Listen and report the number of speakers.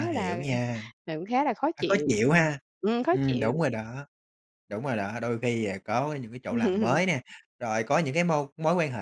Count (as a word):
two